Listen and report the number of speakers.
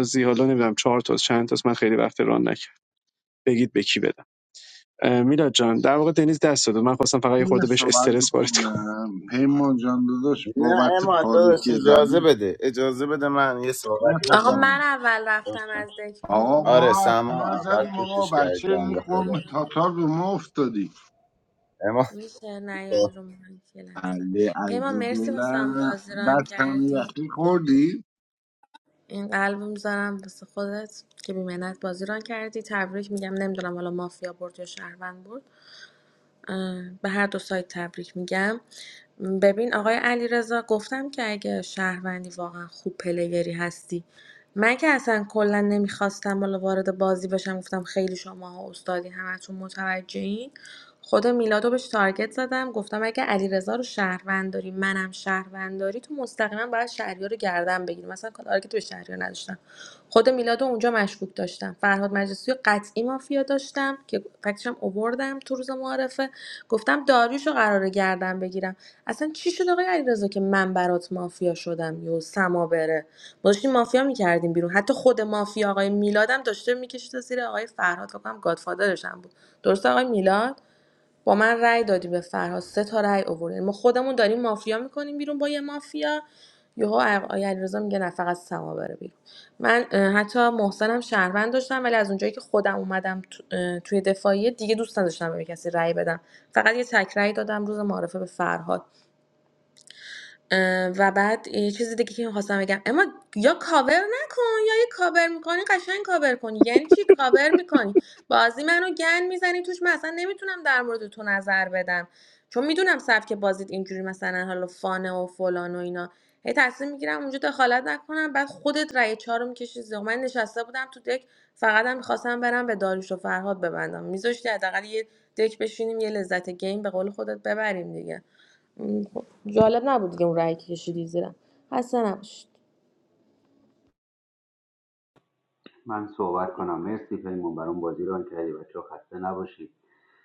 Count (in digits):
5